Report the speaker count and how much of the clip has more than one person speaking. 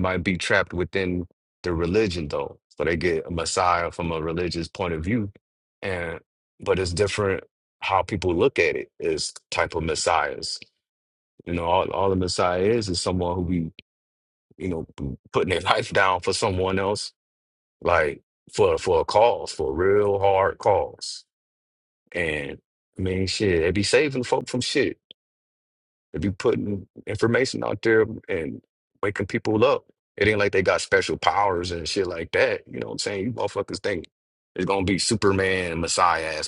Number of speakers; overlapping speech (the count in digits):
1, no overlap